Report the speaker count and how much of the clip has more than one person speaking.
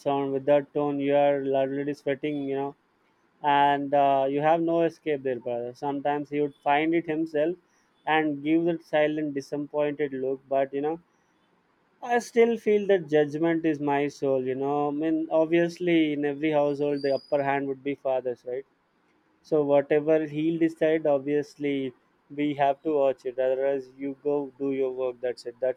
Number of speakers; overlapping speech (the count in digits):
1, no overlap